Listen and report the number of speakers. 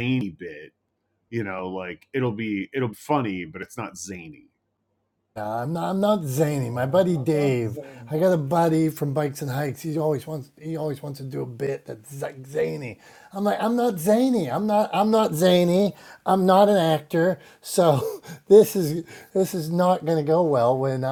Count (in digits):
2